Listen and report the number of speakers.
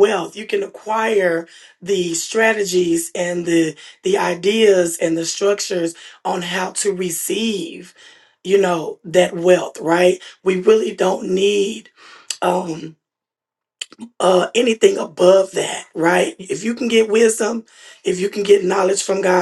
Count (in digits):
1